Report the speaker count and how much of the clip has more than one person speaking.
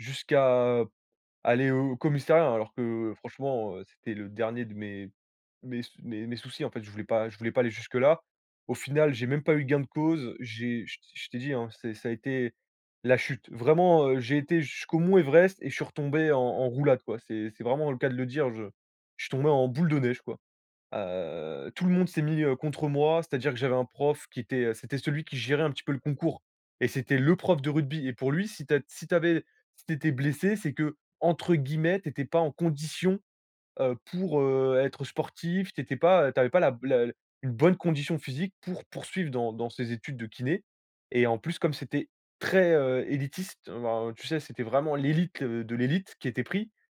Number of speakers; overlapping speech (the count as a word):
one, no overlap